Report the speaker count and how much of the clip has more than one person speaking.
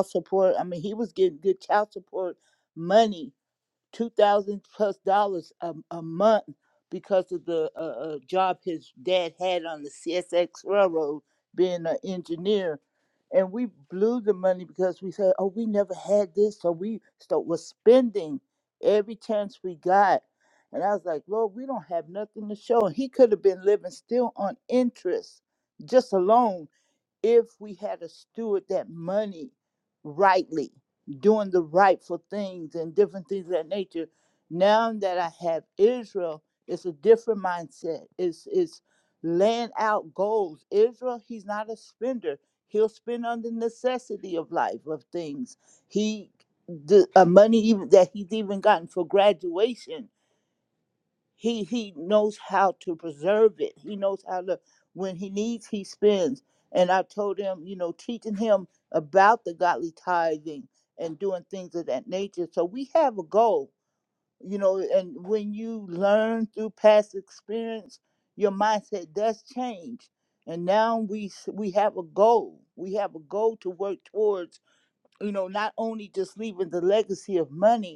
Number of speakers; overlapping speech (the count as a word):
one, no overlap